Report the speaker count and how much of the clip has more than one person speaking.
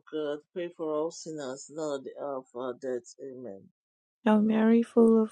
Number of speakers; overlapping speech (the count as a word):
two, no overlap